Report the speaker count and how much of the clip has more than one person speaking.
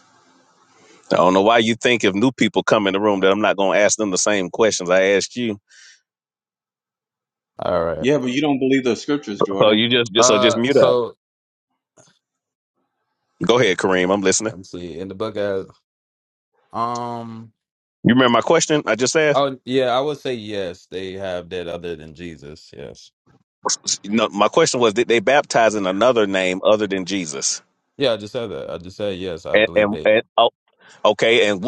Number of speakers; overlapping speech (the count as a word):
three, about 5%